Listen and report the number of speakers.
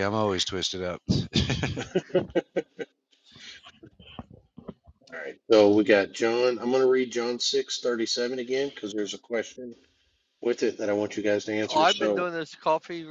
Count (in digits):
3